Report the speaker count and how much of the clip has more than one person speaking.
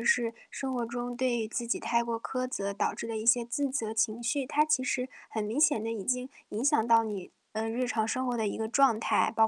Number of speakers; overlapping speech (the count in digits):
1, no overlap